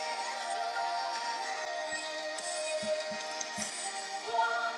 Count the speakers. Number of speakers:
0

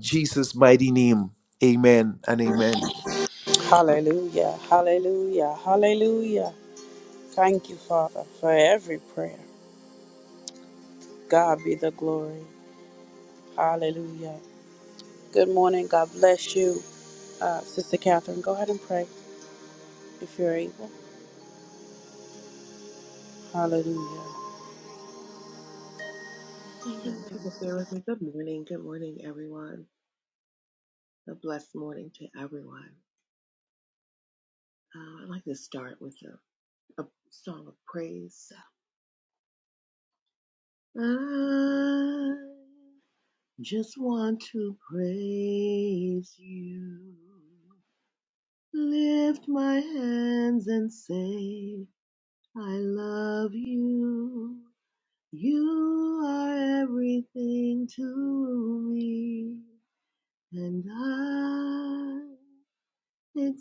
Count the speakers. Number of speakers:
3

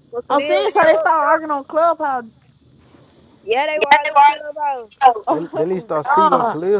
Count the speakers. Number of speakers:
3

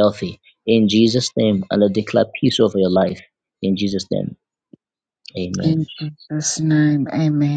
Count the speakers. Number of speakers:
2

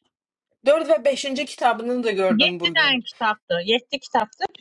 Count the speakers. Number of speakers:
2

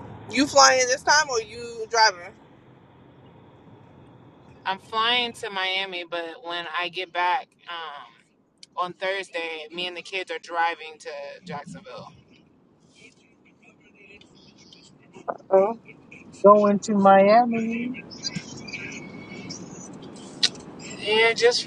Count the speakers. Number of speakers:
3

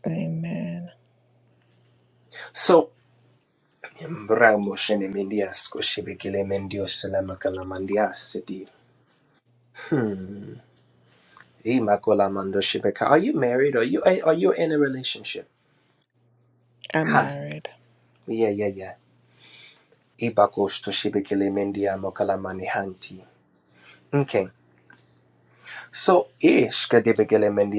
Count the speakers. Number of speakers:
2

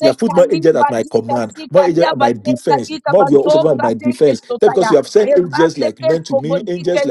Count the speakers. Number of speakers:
1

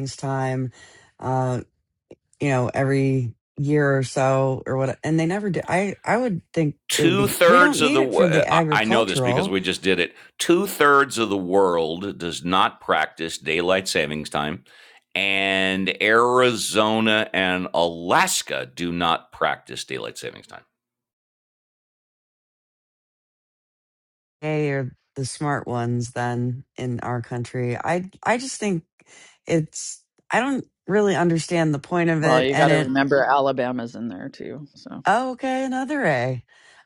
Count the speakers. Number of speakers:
3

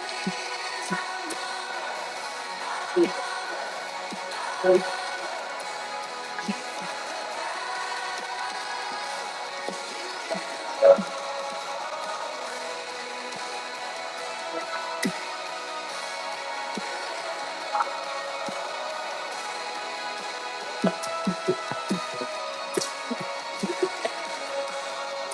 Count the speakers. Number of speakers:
0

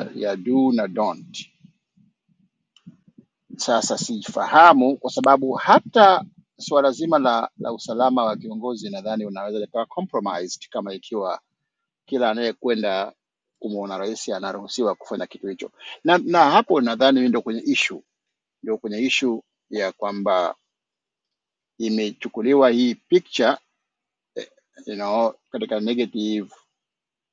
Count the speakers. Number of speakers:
1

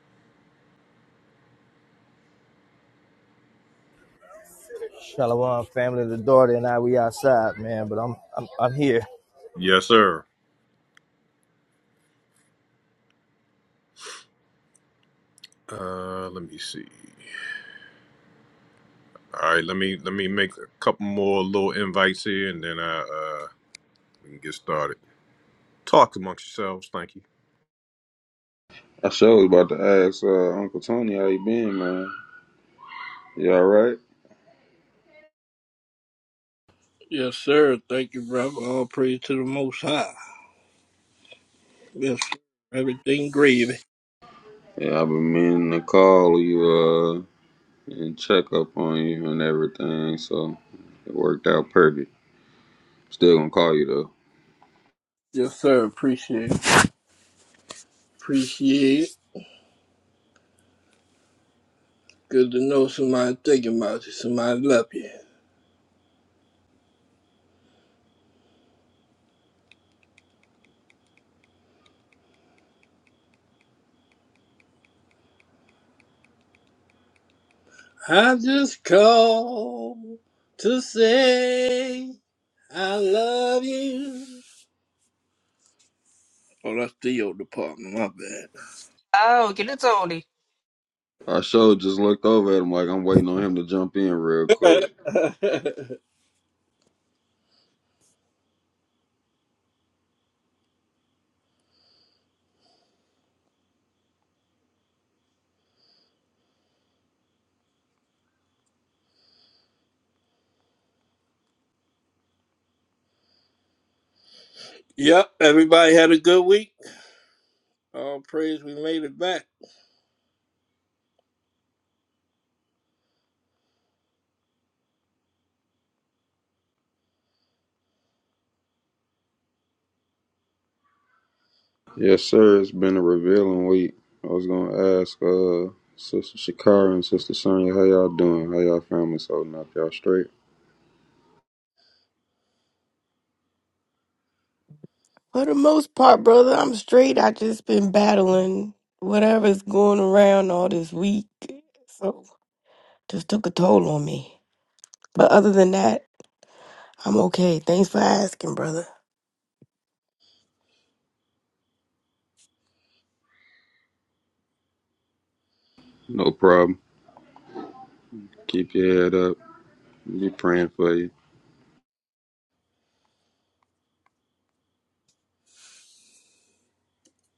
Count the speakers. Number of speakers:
6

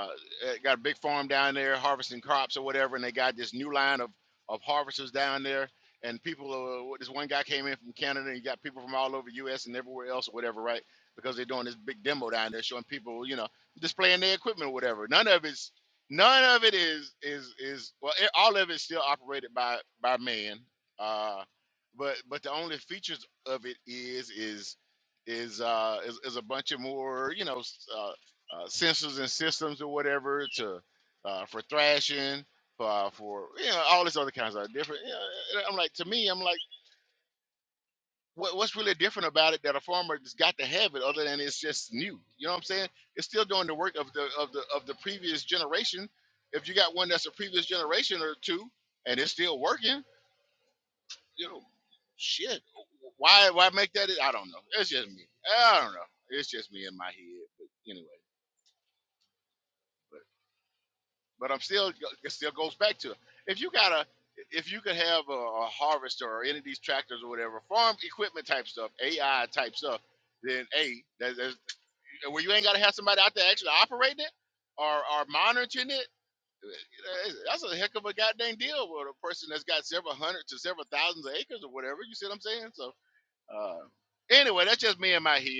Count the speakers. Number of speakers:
1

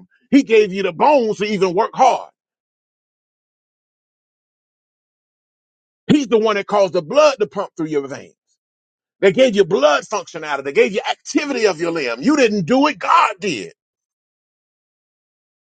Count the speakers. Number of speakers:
1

